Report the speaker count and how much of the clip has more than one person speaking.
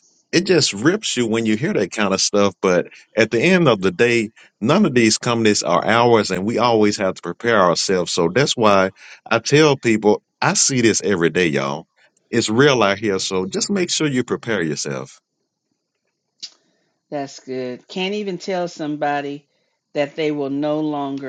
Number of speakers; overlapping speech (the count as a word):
two, no overlap